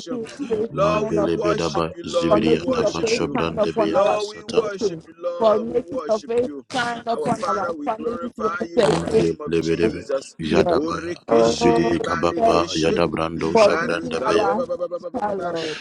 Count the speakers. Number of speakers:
3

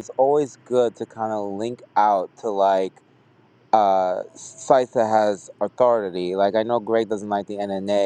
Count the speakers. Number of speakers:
1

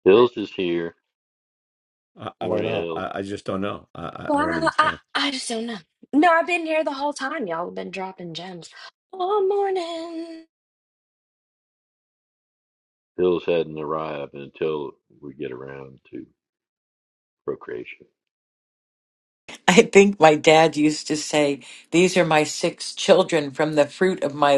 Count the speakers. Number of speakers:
4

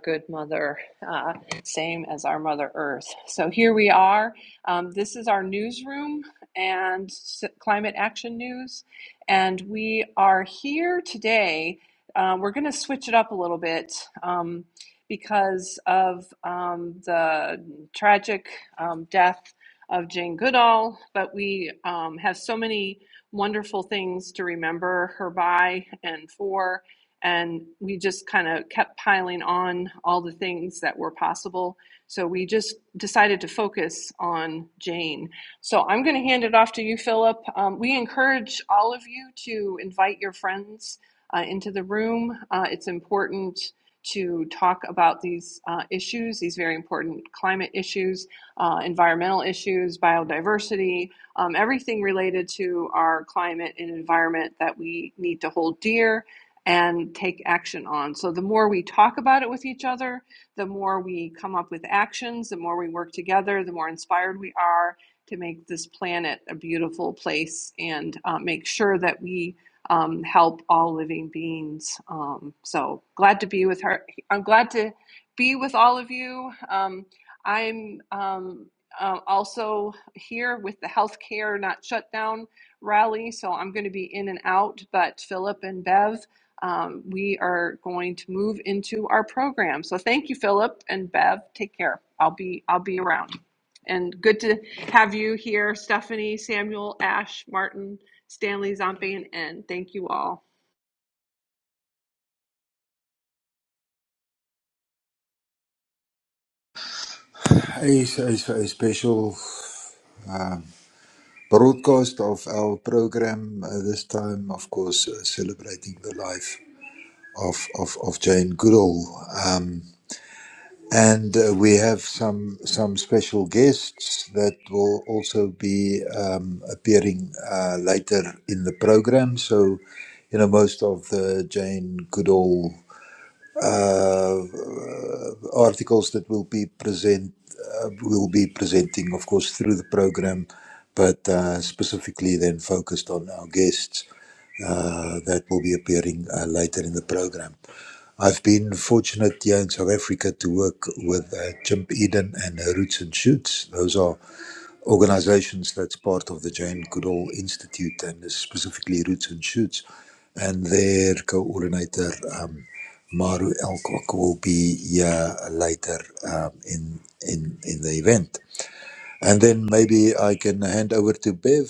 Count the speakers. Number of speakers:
2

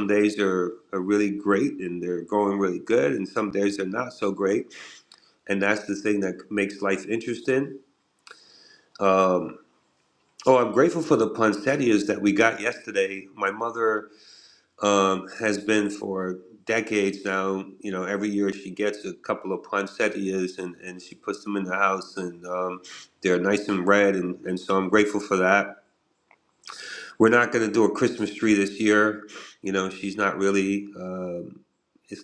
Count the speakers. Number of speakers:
1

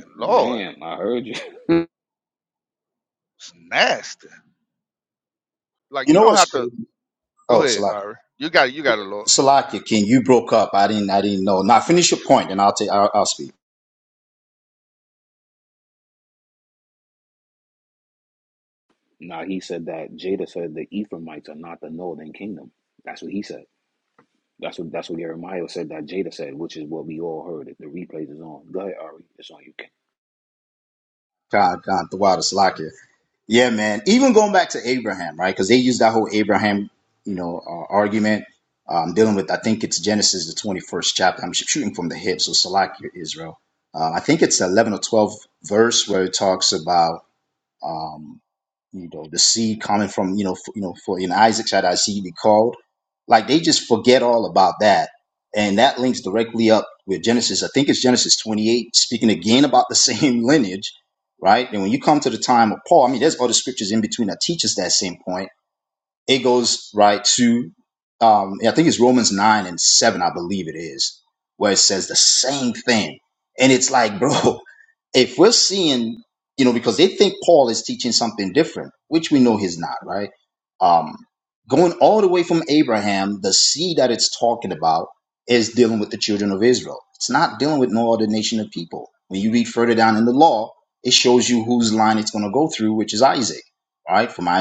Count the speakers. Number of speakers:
3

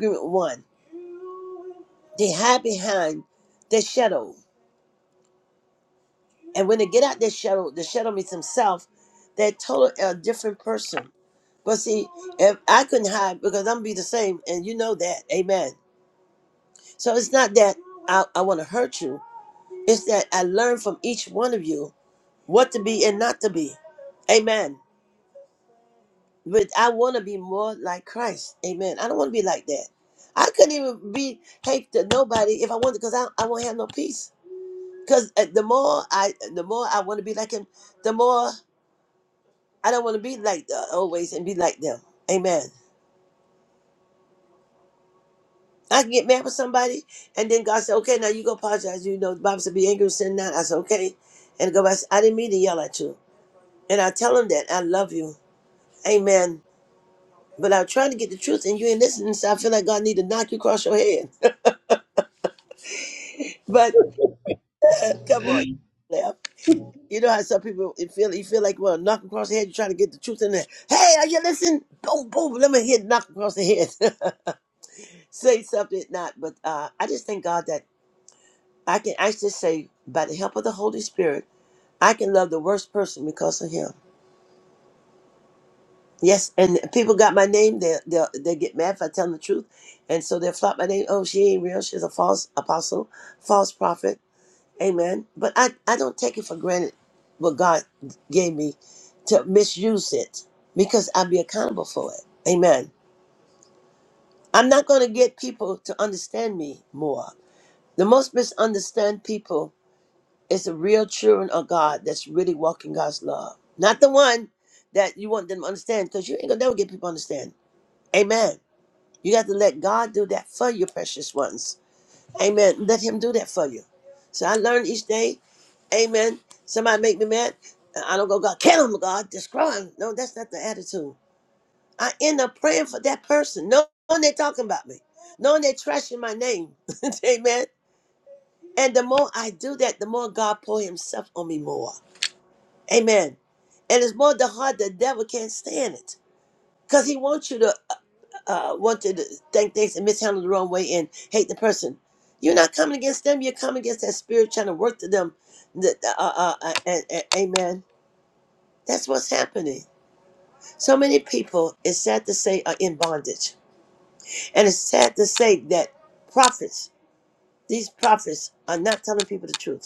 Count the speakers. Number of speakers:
1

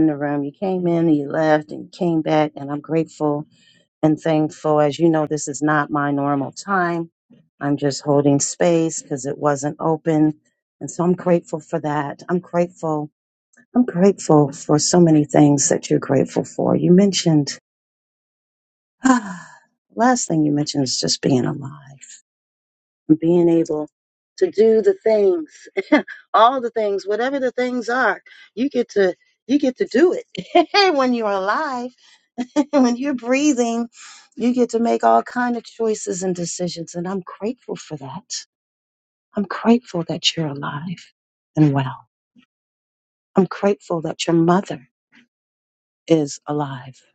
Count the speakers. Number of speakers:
1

